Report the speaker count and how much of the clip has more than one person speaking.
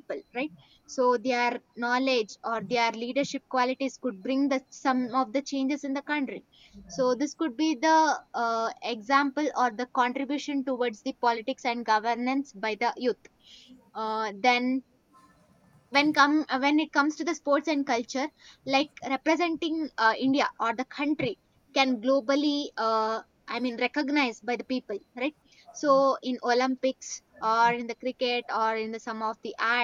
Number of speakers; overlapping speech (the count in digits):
1, no overlap